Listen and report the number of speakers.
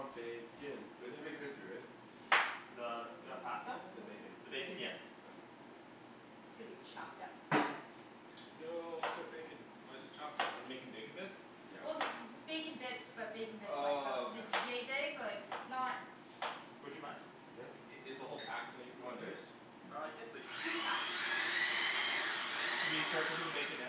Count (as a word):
four